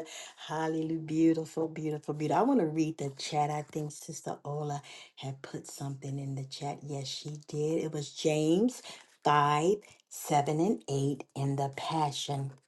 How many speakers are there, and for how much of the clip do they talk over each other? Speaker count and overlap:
one, no overlap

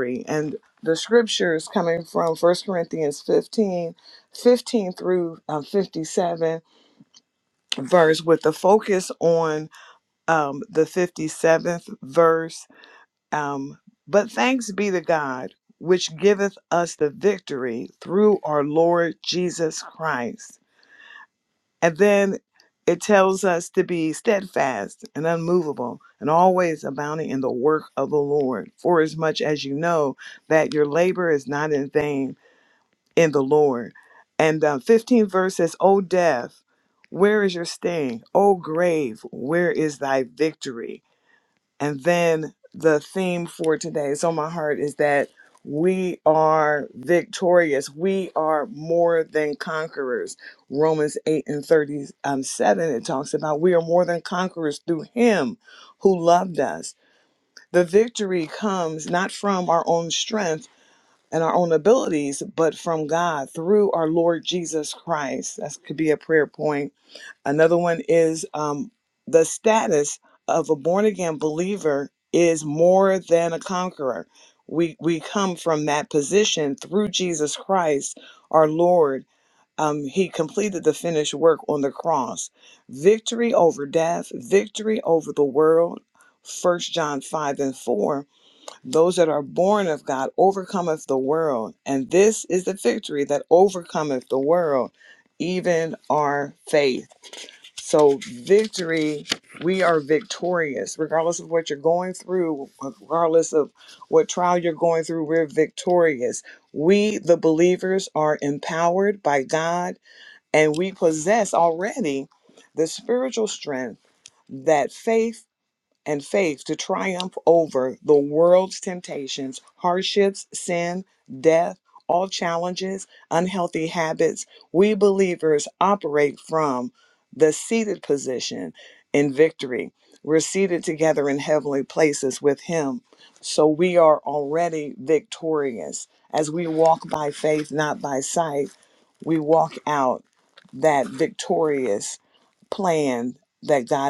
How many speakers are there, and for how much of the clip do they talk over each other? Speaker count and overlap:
one, no overlap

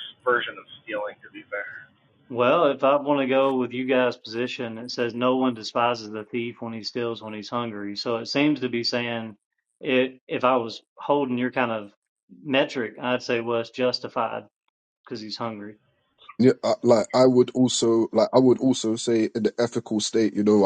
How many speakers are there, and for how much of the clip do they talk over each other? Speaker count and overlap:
three, no overlap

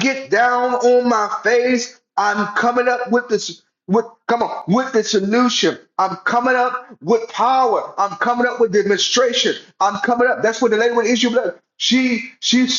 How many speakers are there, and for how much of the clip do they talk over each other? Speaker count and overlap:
one, no overlap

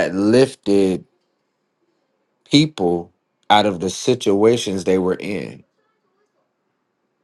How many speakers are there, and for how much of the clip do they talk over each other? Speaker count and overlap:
one, no overlap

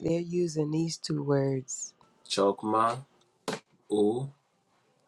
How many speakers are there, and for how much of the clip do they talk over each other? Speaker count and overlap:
two, no overlap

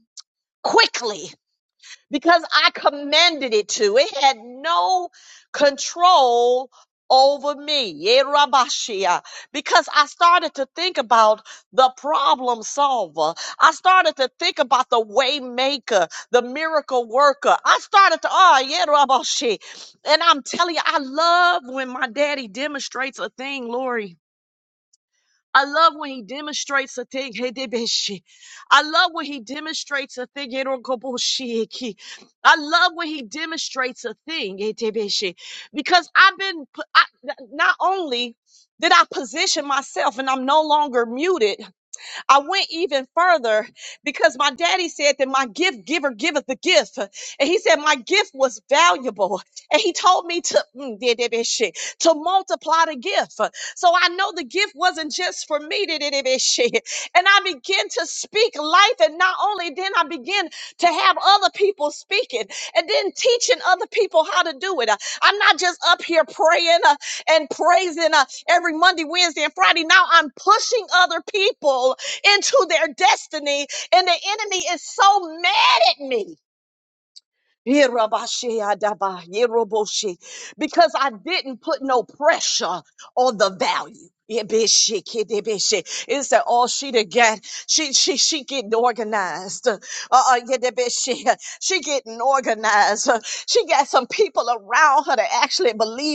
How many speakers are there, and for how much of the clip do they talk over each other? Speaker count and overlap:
one, no overlap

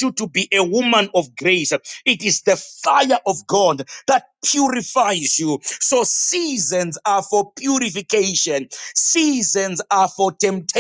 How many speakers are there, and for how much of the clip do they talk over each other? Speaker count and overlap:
one, no overlap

